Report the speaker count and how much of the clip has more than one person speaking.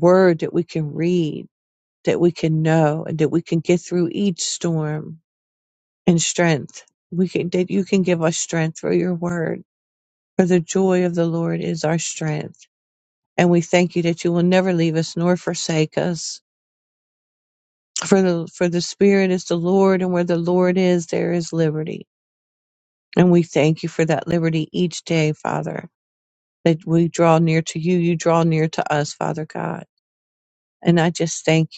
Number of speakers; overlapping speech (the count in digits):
1, no overlap